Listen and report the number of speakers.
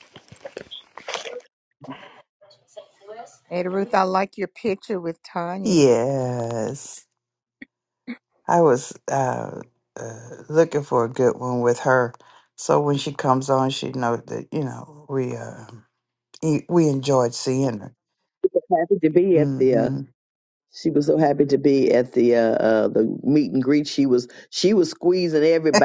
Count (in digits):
3